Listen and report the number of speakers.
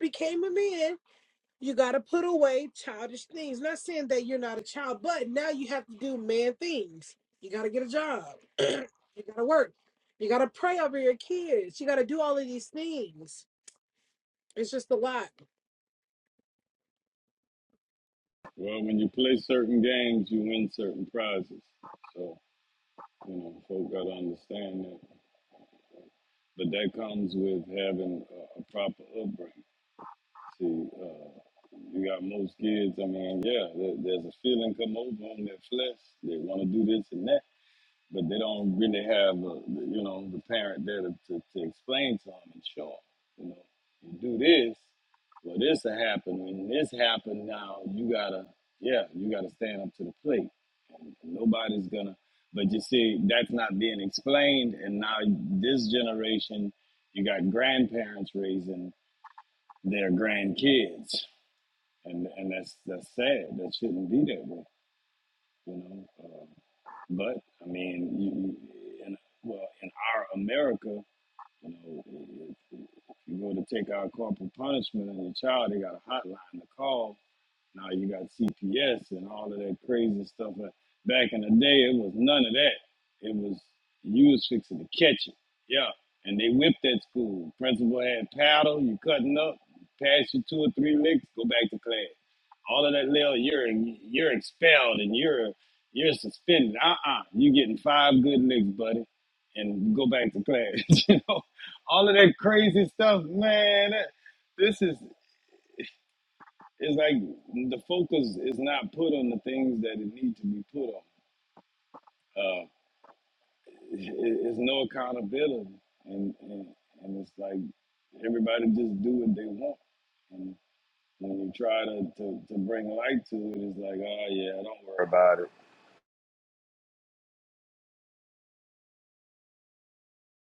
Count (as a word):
two